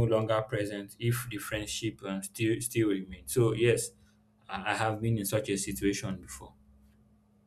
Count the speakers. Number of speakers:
1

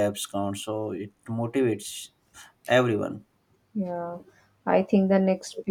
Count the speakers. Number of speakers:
2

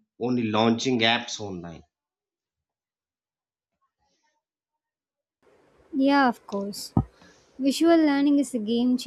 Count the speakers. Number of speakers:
2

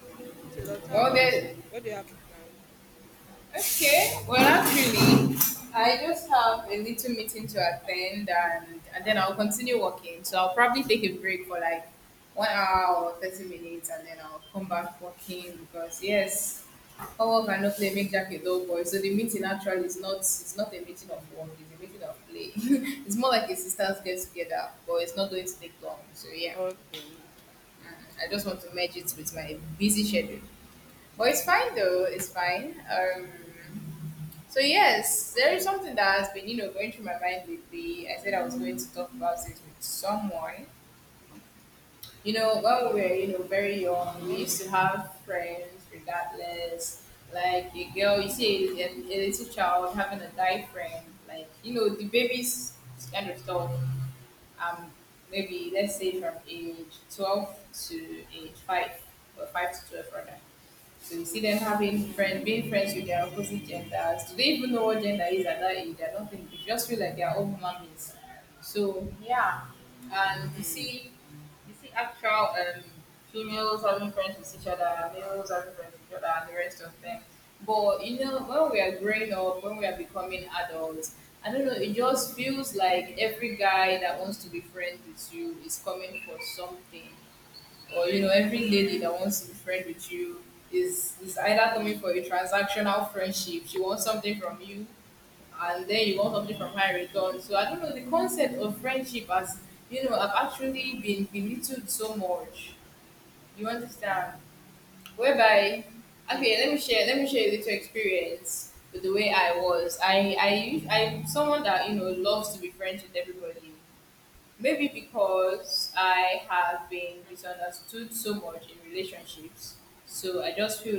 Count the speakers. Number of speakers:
2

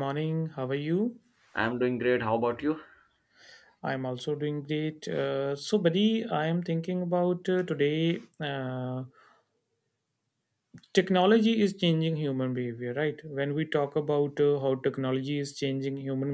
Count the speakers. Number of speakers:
2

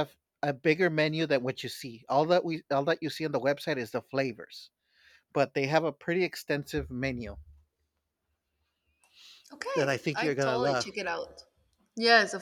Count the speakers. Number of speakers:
2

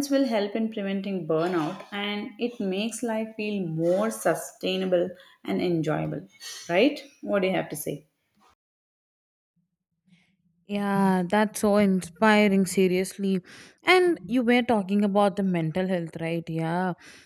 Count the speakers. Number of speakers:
2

